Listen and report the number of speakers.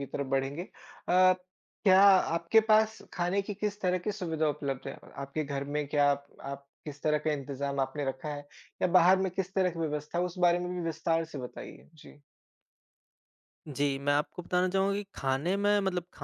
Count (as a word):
two